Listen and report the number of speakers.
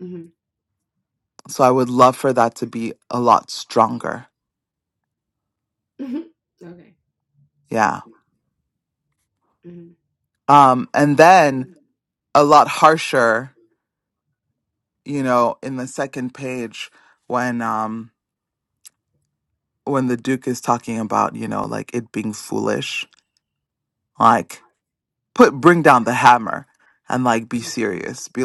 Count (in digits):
2